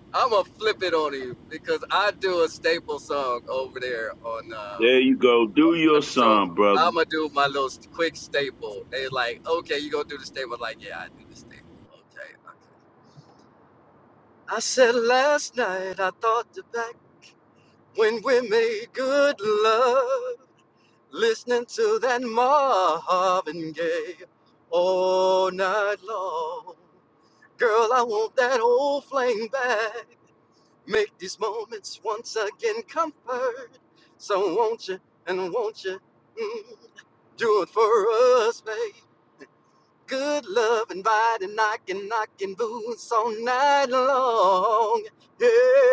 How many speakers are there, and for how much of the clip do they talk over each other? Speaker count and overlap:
2, about 2%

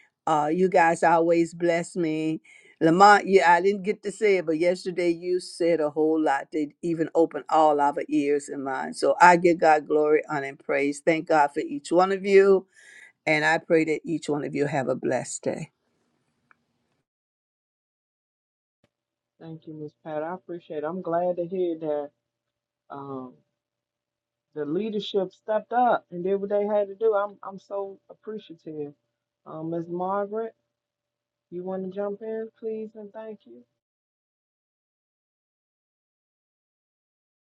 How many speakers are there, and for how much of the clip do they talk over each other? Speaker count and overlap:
2, no overlap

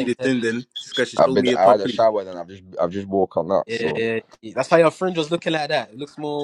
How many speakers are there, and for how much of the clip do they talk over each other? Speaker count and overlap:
3, about 20%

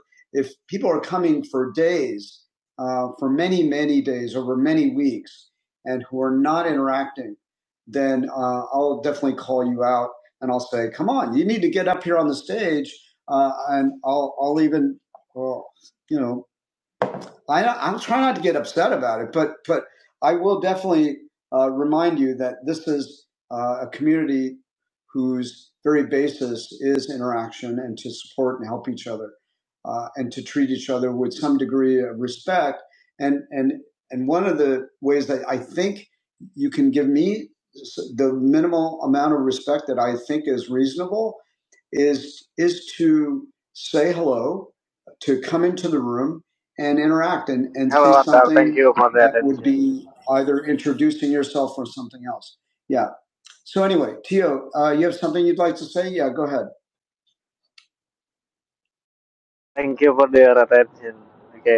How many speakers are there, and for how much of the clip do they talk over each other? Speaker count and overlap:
2, about 3%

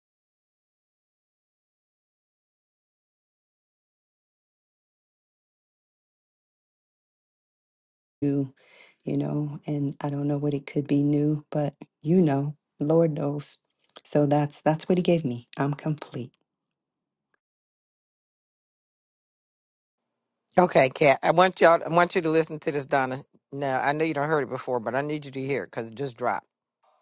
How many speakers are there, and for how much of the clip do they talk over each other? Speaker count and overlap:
2, no overlap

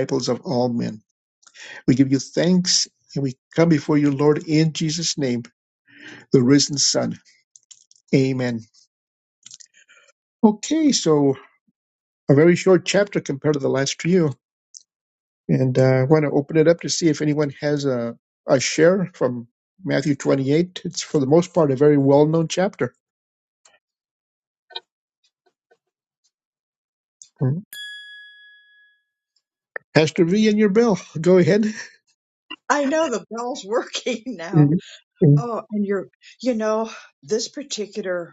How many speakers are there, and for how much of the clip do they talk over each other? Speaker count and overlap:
2, about 1%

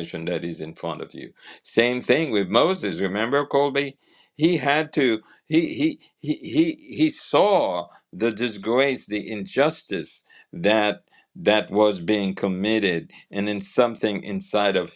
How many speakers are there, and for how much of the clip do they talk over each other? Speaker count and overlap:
1, no overlap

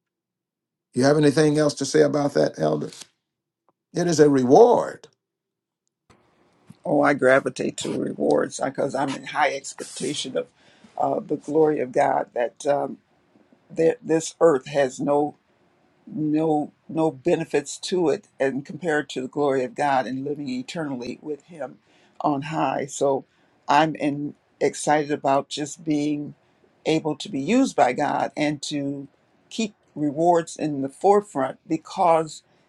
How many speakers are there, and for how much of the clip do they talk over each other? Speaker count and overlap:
2, no overlap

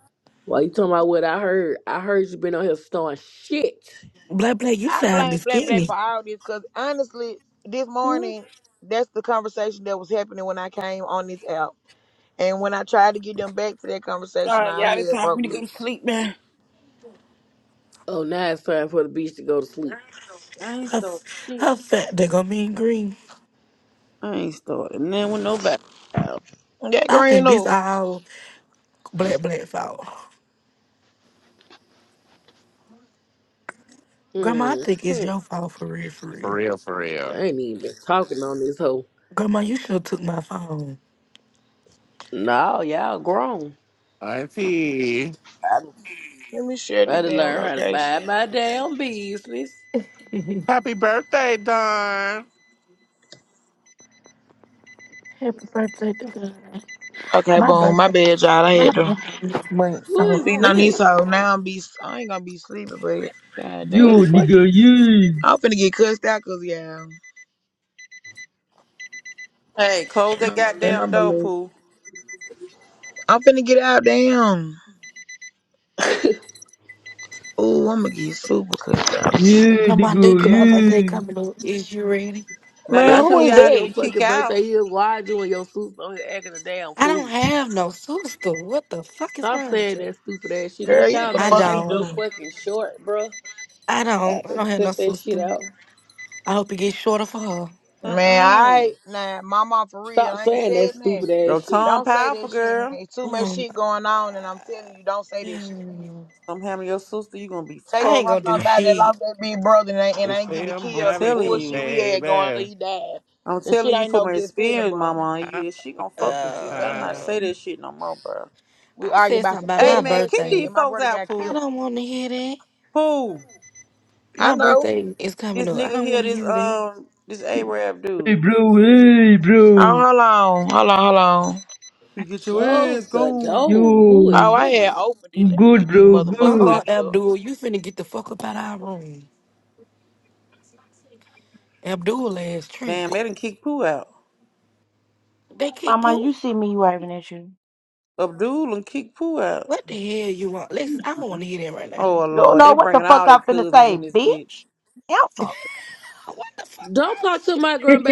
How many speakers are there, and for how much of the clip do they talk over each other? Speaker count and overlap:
7, about 25%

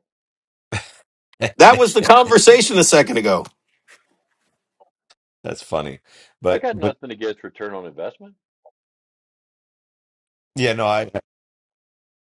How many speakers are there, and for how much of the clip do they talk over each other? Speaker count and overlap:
3, about 3%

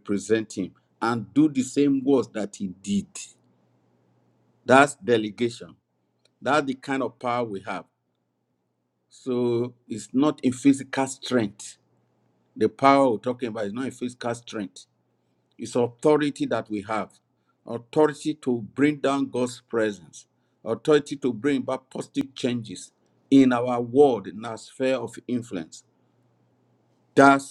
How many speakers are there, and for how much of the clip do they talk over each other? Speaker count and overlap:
1, no overlap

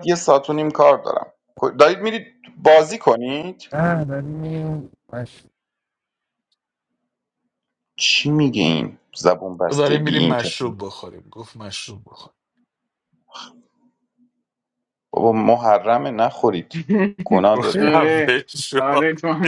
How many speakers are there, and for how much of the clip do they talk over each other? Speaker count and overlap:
4, about 4%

